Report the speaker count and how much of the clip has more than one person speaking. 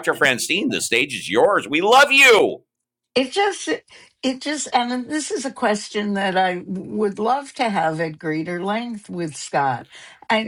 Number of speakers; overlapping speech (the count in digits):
2, under 1%